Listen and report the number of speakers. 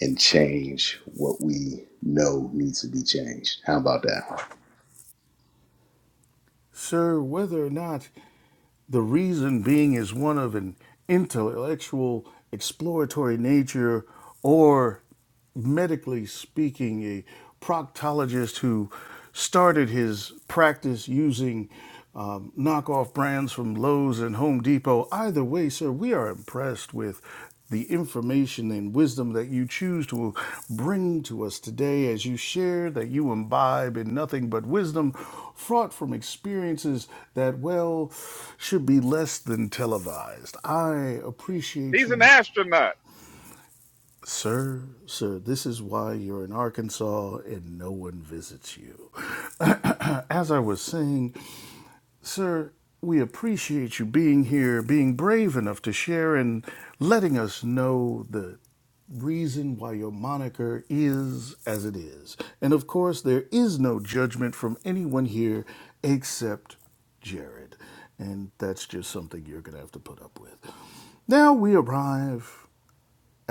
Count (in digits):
3